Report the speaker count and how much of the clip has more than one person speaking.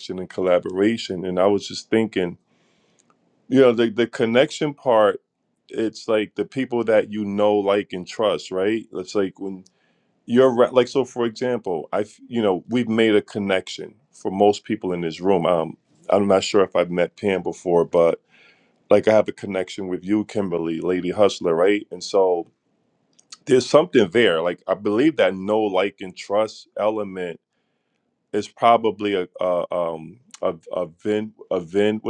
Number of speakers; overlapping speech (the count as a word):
one, no overlap